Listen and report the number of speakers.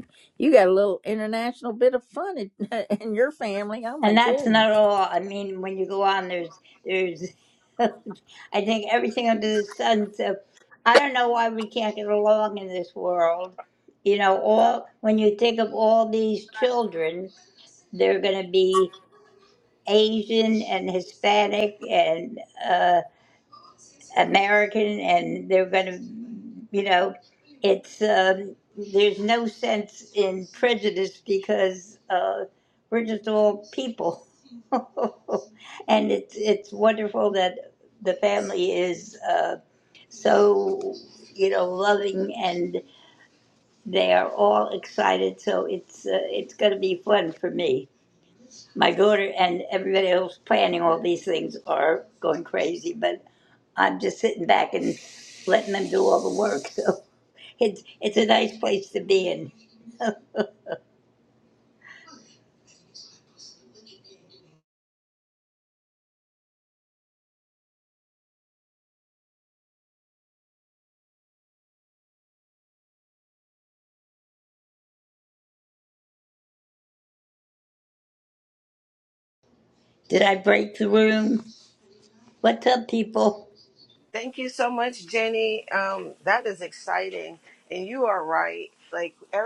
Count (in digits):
3